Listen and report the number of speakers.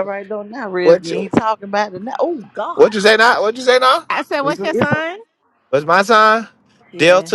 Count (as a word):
three